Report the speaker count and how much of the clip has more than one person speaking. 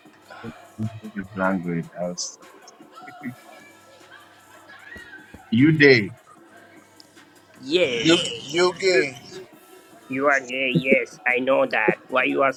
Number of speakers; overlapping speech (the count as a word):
three, about 3%